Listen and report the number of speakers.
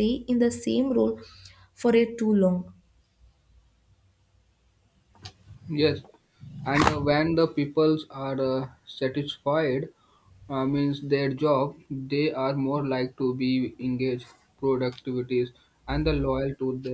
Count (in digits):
2